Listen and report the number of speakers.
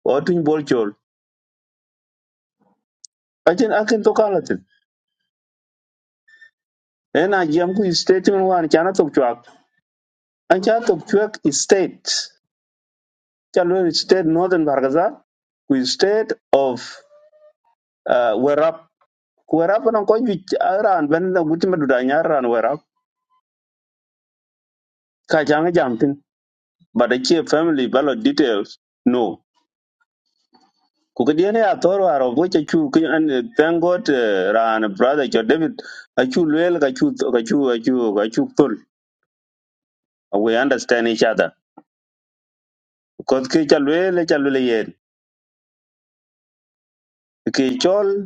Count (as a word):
one